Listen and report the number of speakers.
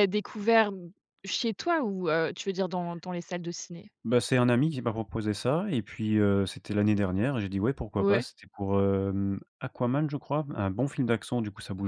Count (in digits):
2